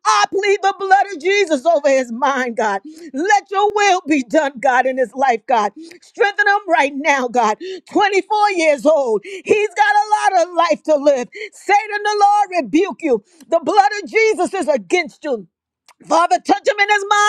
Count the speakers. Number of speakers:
one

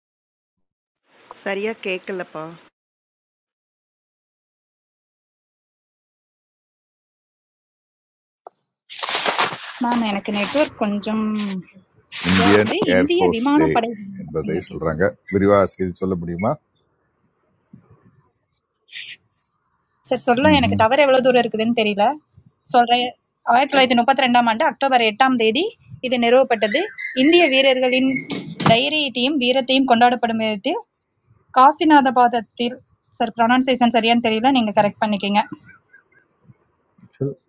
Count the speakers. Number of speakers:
three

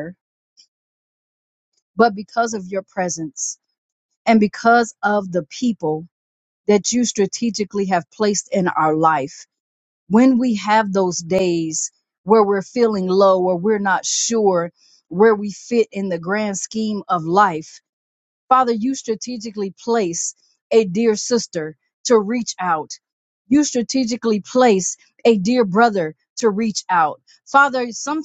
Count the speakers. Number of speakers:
one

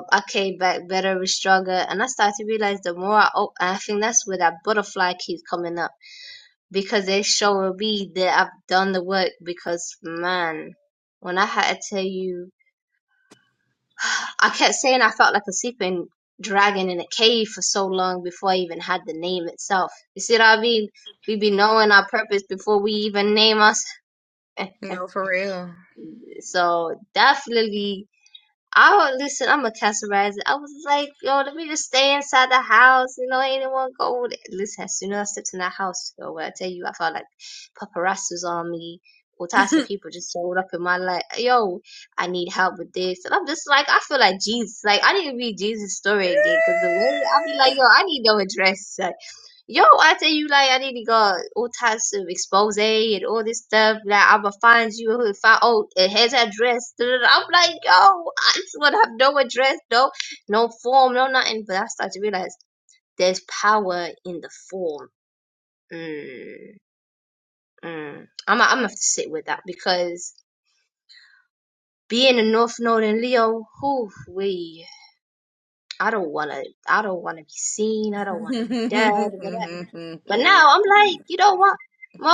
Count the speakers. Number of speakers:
two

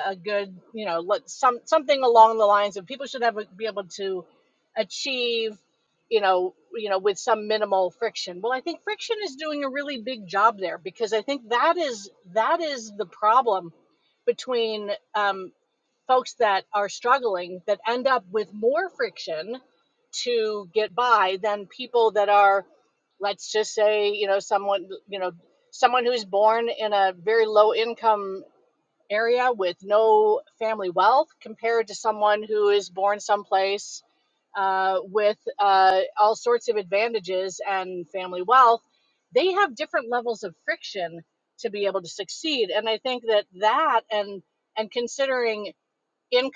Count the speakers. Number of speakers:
one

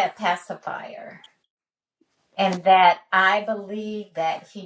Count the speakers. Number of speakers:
one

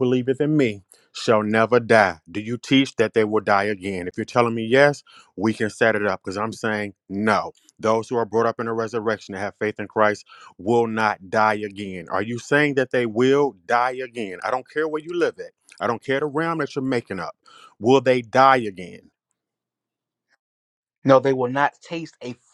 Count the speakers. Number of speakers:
two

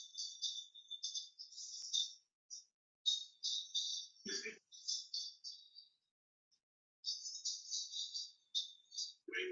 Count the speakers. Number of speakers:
zero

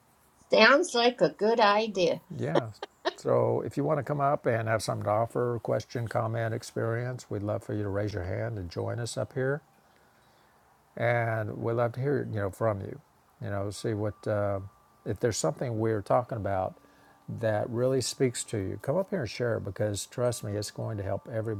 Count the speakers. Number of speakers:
two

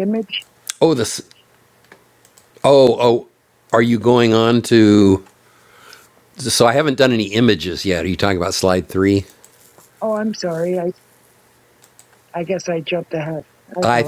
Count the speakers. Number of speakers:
two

